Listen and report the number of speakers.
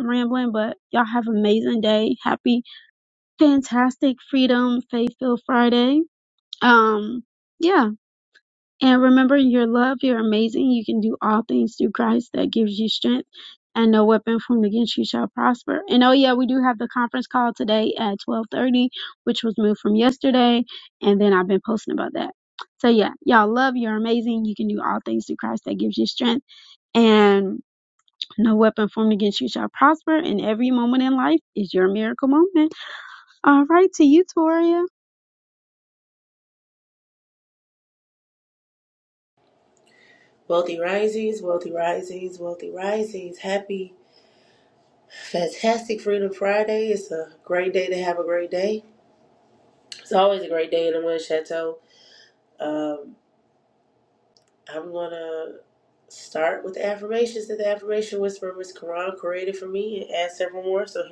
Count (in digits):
2